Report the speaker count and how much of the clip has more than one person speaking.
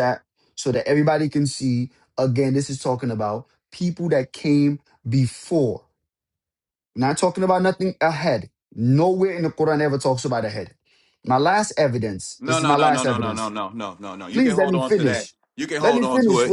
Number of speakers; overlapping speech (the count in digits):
2, about 16%